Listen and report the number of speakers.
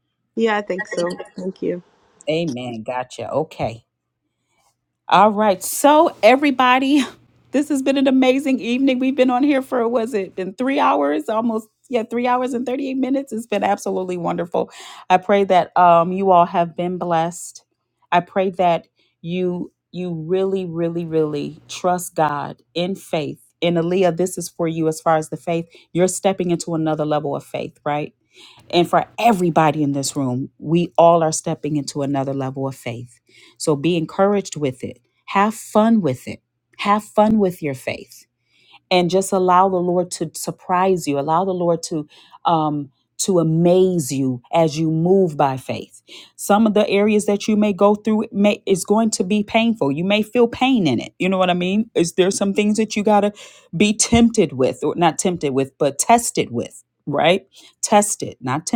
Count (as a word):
two